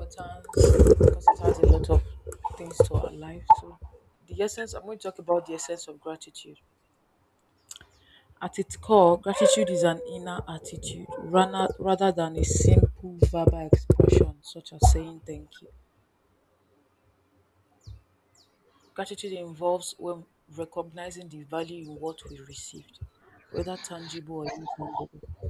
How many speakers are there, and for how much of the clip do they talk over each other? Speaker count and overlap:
1, no overlap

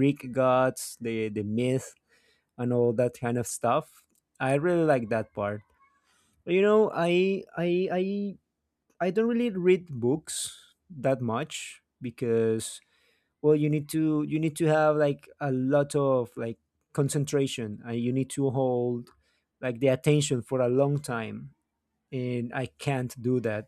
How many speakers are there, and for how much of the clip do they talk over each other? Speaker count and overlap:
1, no overlap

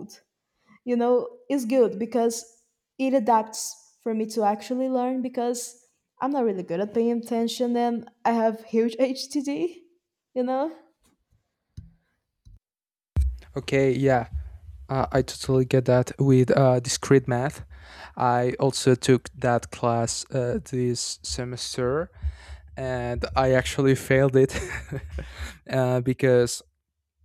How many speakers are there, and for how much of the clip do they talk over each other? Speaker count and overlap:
2, no overlap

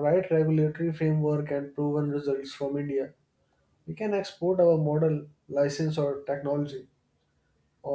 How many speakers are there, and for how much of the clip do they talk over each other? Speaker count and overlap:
1, no overlap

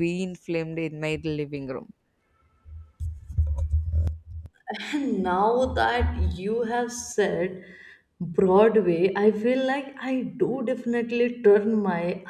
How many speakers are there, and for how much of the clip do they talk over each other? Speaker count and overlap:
2, no overlap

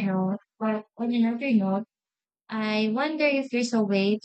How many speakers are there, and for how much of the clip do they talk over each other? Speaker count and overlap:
1, no overlap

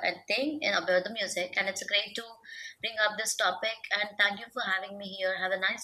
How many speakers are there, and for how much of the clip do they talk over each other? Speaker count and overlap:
1, no overlap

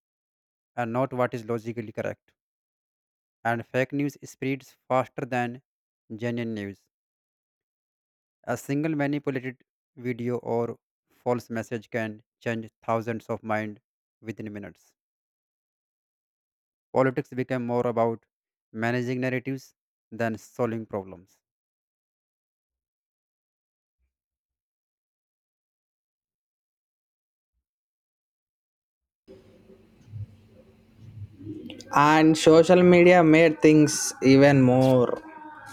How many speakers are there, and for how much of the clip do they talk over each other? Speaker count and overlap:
2, no overlap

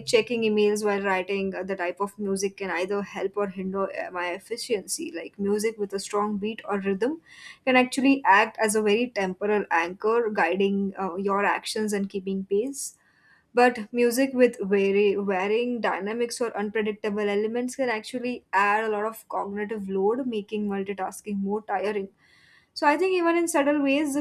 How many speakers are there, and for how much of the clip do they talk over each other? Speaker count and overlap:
1, no overlap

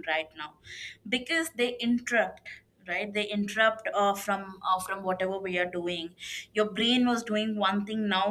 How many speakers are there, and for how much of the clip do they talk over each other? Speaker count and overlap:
1, no overlap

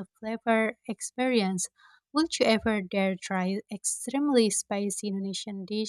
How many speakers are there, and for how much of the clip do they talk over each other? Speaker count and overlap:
1, no overlap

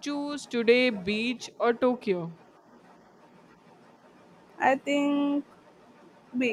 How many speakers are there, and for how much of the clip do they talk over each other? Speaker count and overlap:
2, no overlap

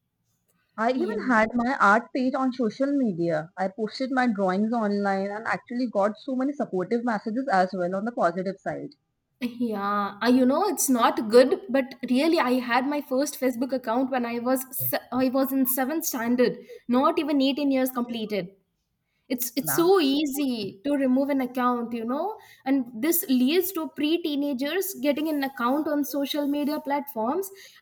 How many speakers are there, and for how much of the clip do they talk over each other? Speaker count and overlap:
2, about 2%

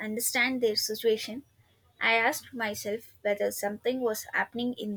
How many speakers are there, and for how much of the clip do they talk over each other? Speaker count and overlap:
1, no overlap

